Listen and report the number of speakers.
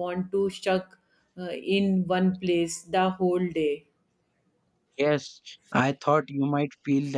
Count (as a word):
two